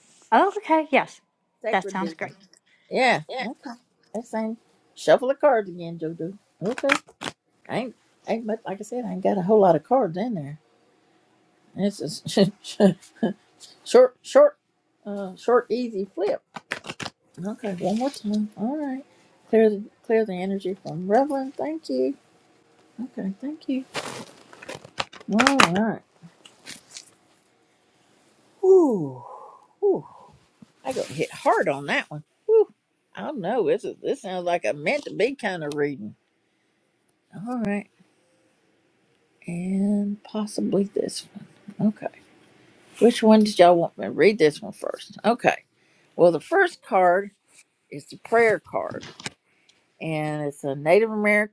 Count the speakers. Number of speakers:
2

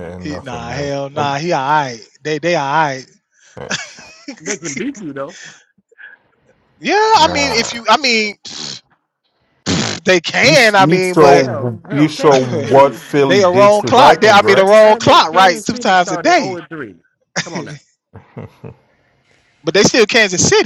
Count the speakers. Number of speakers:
3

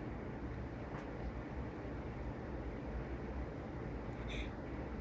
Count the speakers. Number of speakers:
0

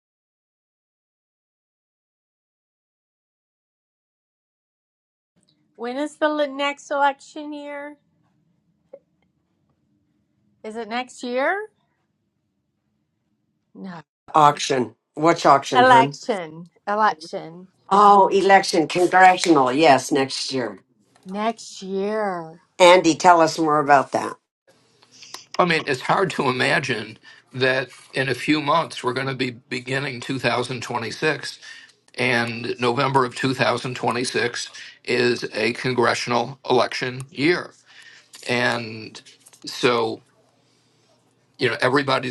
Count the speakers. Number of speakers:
3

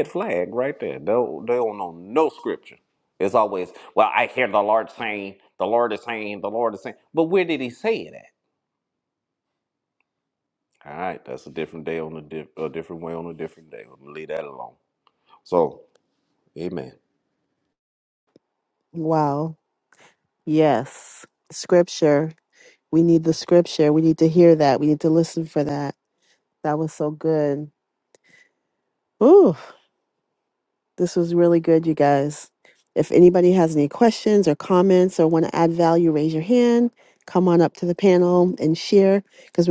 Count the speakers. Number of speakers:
2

